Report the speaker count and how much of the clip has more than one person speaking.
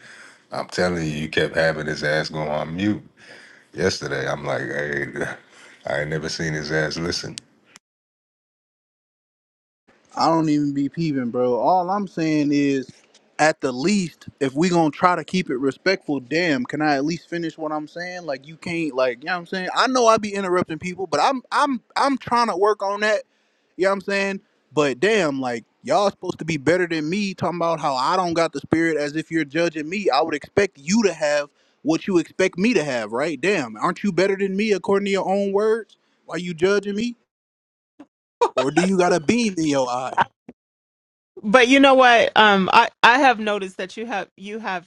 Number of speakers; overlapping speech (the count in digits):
3, no overlap